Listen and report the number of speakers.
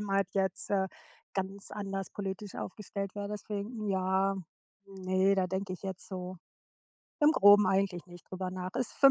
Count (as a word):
one